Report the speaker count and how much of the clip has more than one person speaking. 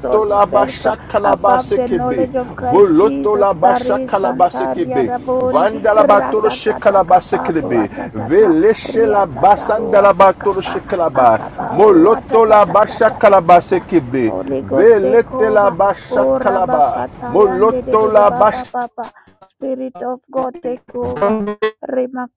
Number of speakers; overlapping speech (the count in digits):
2, about 64%